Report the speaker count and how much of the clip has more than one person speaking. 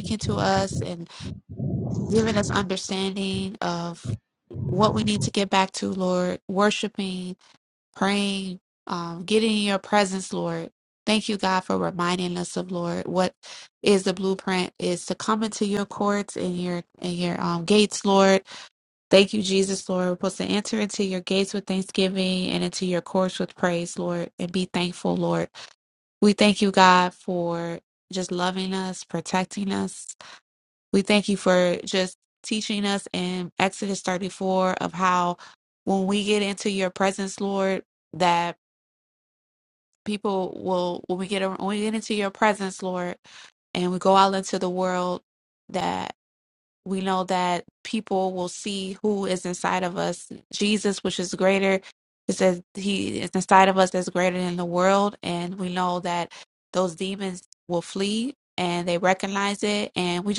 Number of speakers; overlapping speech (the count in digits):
1, no overlap